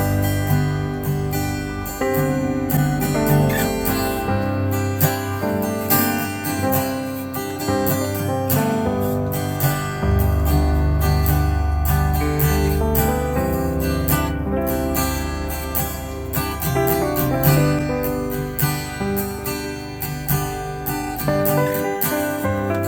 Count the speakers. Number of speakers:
0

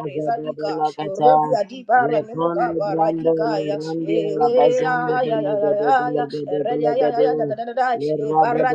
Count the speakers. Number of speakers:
2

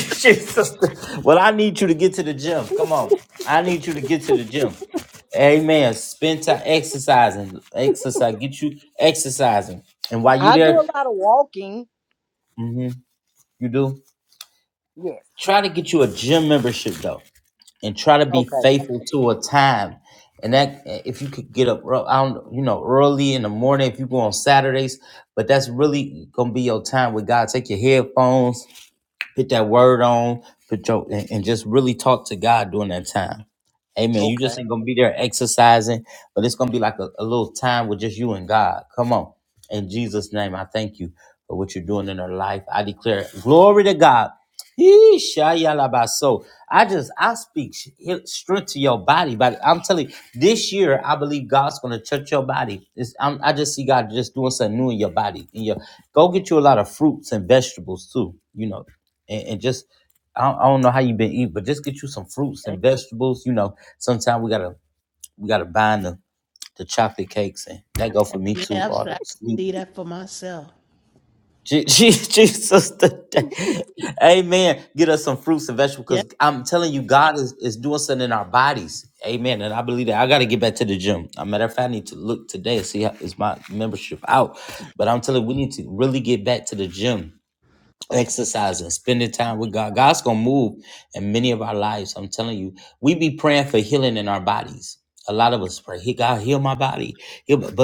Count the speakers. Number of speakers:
3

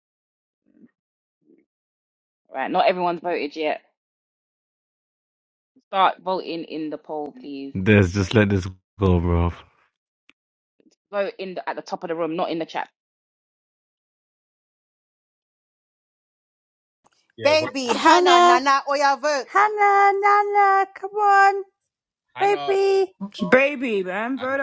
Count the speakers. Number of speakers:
5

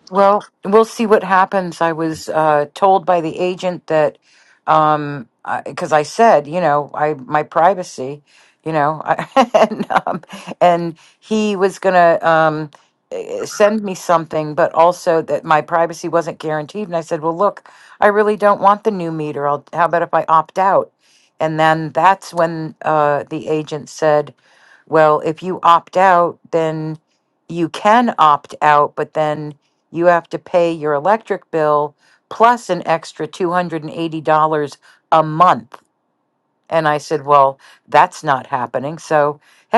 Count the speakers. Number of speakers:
1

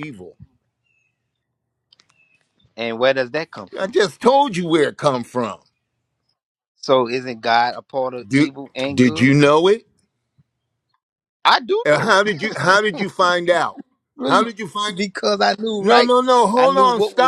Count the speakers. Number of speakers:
2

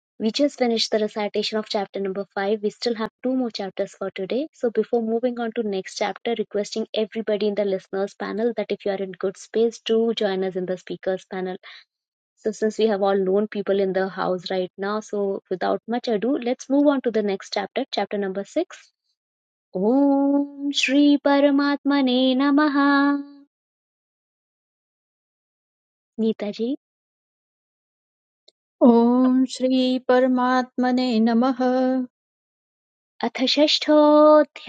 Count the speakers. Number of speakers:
2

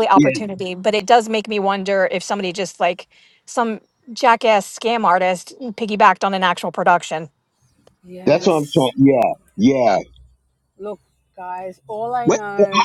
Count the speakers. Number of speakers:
3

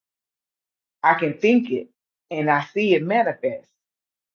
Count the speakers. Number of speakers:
1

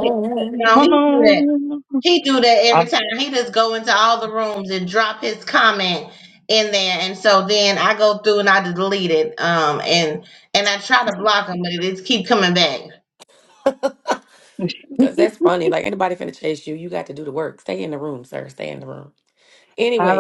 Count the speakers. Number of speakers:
3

